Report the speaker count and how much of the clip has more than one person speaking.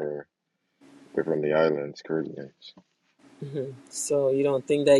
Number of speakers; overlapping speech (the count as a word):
two, no overlap